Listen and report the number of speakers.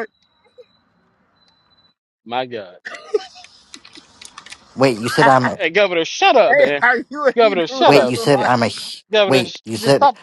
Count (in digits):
3